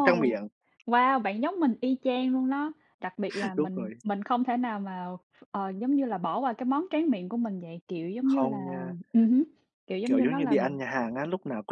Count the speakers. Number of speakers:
2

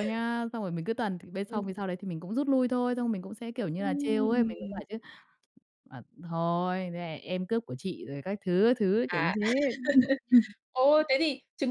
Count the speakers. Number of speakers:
2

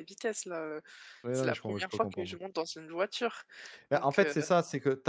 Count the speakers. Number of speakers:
2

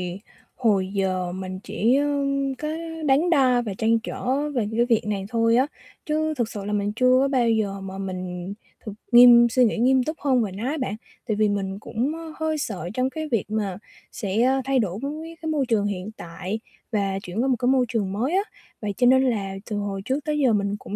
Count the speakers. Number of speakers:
1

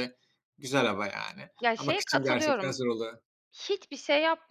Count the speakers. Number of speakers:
2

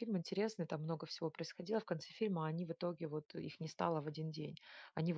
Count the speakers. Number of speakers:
1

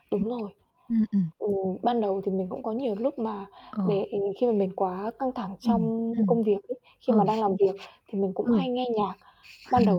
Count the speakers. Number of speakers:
2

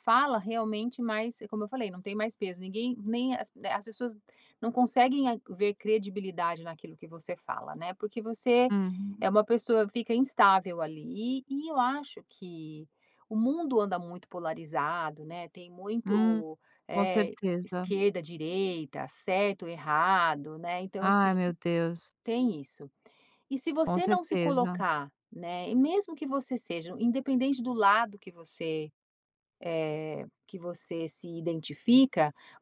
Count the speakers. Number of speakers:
2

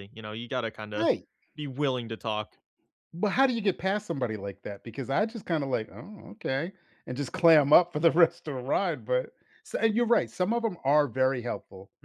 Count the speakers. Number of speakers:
2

